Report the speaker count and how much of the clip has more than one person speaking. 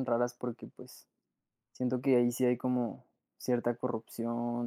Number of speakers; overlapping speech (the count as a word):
one, no overlap